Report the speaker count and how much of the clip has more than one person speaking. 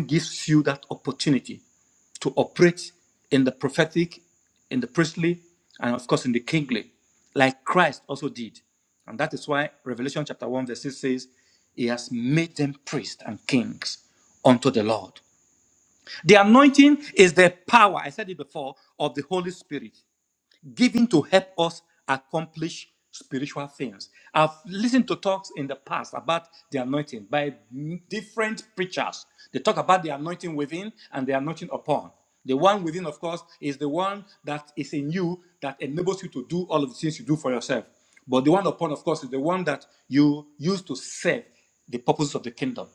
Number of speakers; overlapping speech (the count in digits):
1, no overlap